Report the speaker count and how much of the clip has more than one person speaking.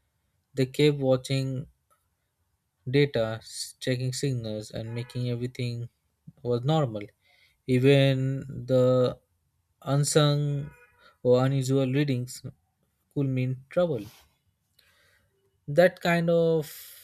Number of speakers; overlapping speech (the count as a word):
one, no overlap